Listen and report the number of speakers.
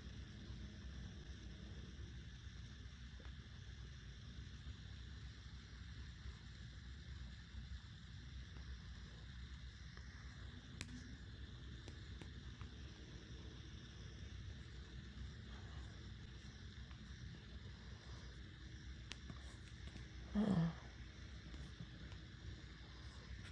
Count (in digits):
0